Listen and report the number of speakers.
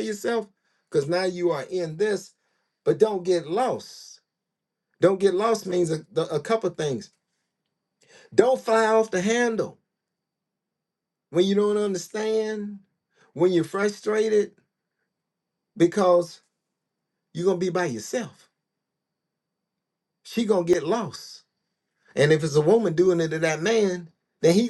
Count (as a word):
one